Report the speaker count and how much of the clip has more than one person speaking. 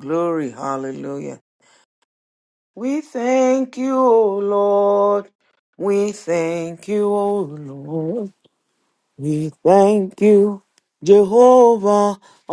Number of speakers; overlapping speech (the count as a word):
one, no overlap